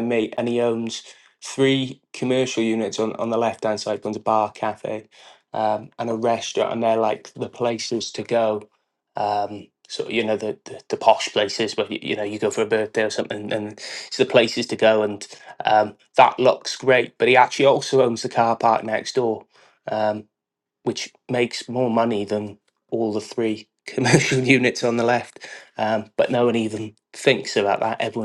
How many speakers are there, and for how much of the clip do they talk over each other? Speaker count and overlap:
1, no overlap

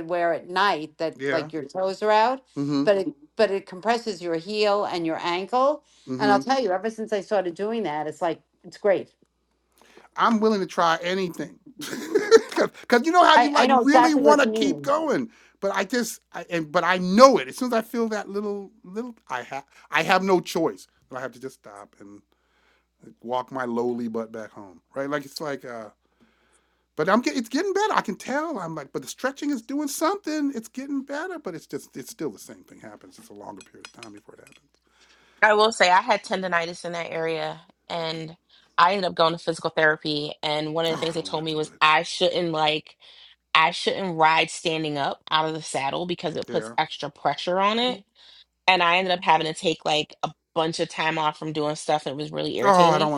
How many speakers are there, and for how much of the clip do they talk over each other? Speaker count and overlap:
3, about 7%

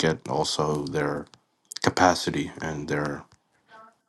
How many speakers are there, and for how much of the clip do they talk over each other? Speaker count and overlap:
1, no overlap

